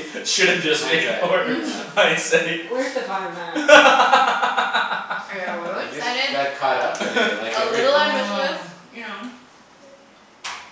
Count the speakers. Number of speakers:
4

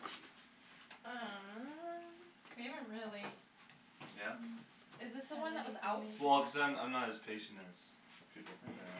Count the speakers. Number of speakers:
3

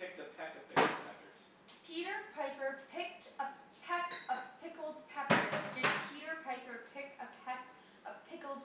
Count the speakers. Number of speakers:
2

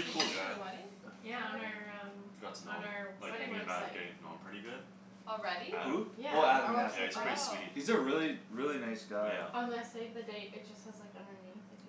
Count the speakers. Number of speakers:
4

